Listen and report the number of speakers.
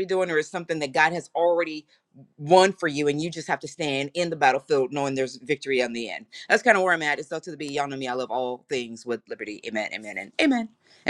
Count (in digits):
1